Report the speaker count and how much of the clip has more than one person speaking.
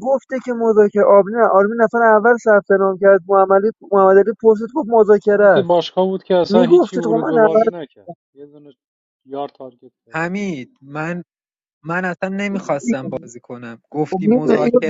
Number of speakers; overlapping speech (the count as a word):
three, about 18%